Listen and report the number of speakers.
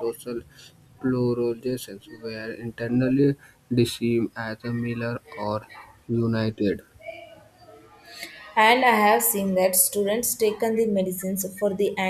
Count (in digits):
2